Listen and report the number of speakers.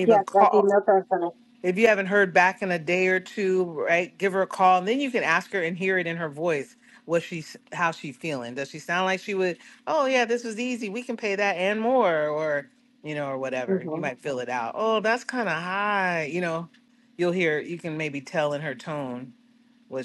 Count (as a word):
two